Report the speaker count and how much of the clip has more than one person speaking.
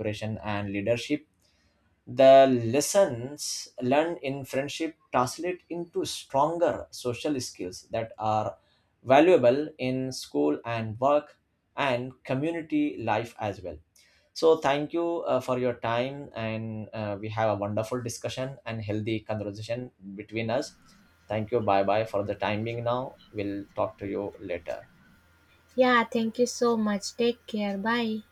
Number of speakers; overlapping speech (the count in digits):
2, no overlap